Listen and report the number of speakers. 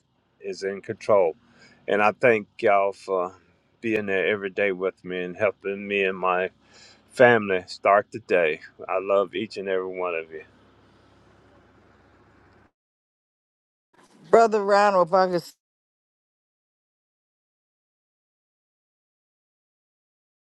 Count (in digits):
2